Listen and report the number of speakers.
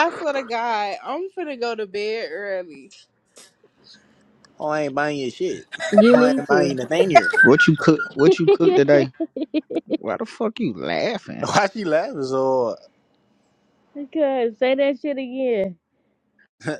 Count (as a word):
four